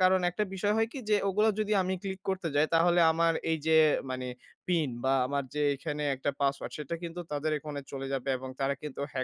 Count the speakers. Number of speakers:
1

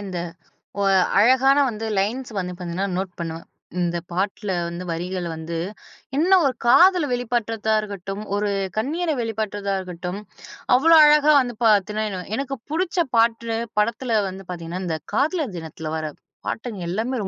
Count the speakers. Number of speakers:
1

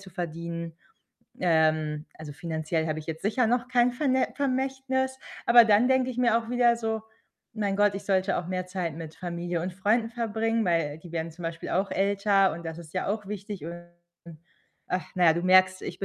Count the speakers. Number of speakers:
1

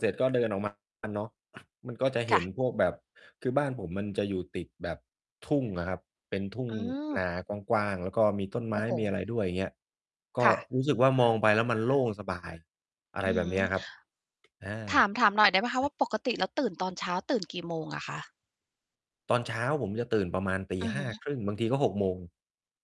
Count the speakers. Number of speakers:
2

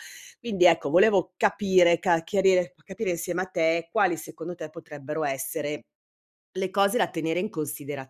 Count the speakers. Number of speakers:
1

